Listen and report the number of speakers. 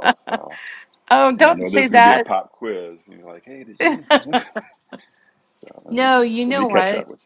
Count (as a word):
two